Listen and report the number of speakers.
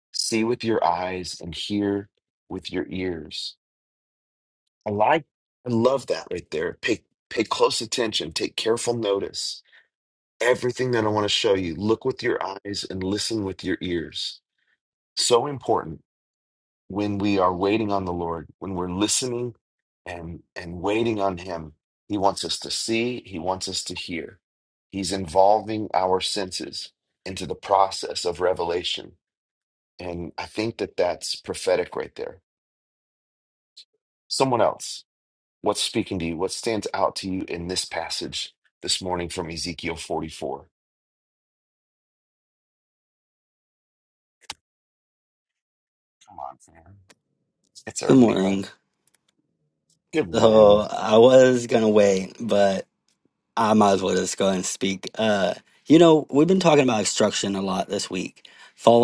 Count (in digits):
2